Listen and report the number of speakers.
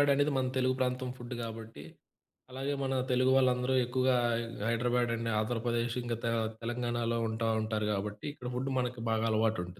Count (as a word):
one